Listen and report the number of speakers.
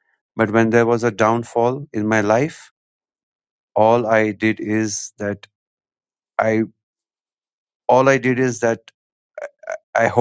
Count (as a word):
one